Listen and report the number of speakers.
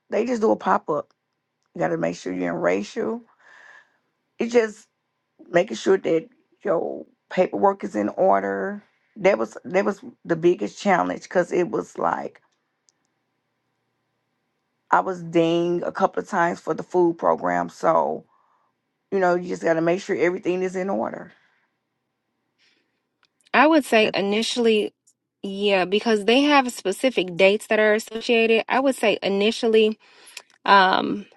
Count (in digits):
2